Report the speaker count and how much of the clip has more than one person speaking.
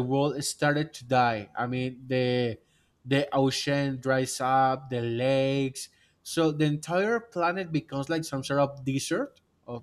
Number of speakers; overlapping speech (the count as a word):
one, no overlap